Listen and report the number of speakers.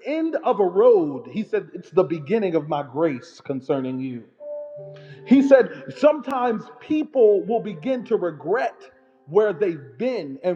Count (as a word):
one